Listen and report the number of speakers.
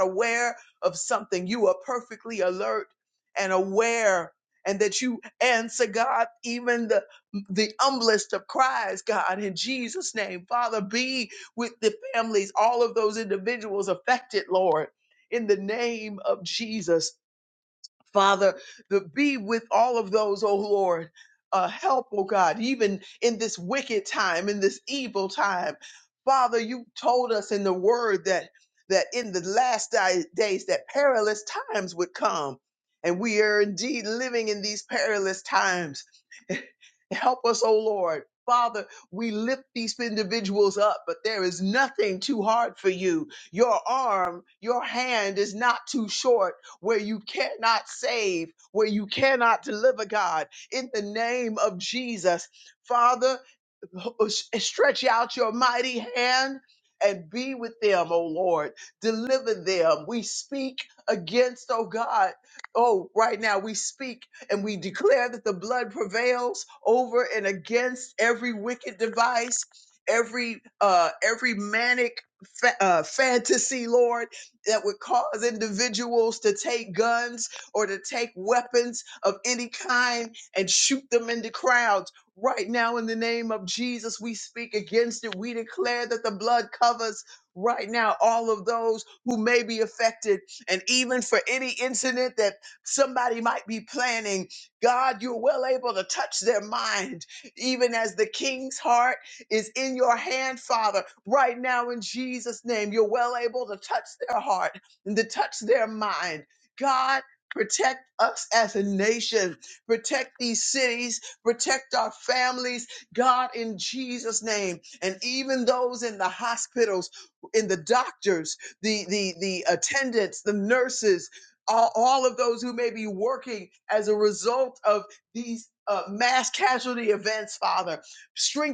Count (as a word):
one